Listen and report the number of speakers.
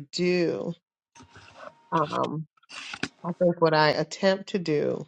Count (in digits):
1